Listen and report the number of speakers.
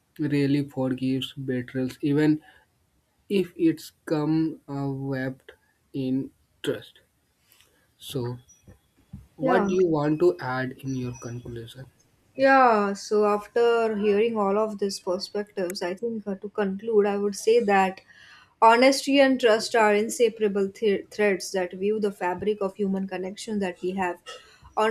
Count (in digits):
2